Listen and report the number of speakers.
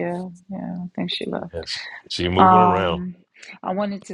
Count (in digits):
2